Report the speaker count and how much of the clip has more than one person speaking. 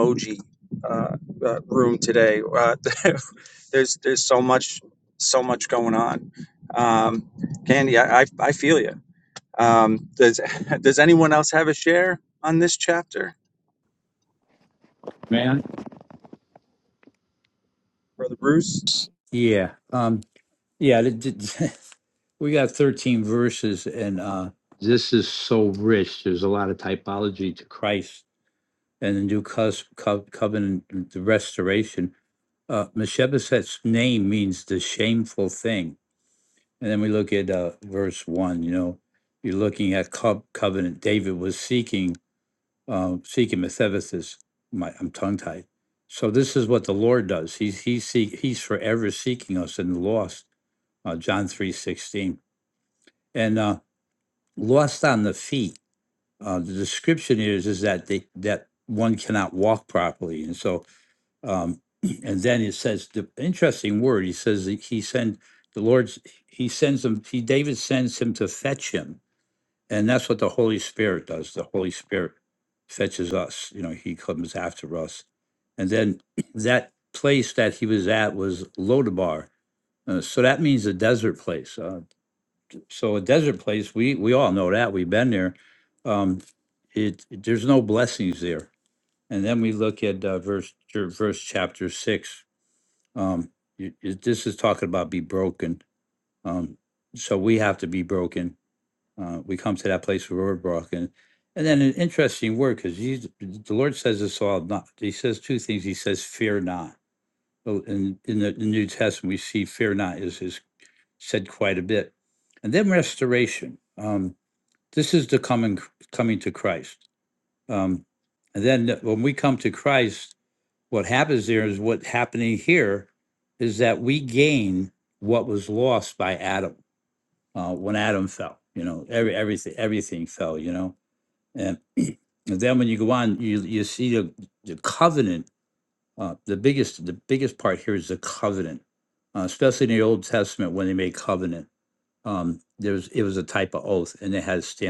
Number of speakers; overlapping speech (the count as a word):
two, no overlap